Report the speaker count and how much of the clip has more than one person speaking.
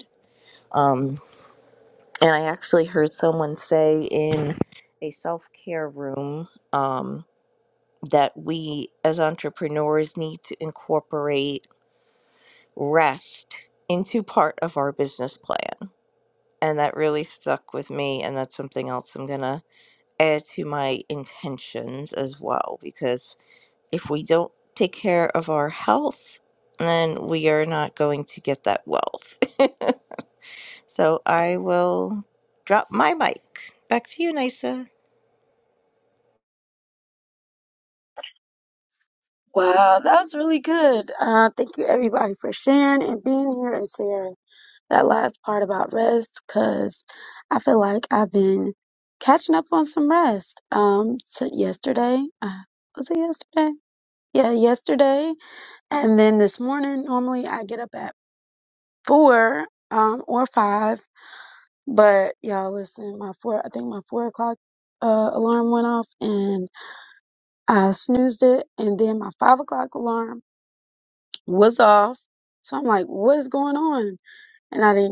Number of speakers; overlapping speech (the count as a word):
two, no overlap